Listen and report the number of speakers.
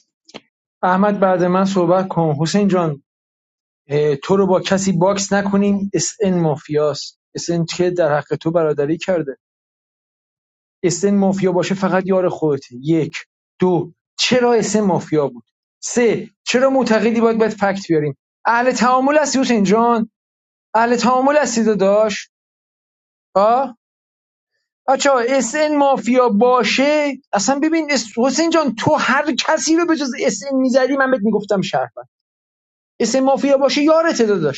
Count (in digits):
1